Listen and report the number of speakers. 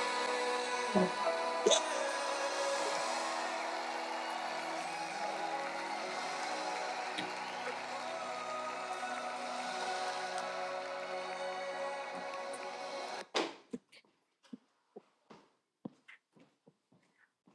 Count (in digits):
0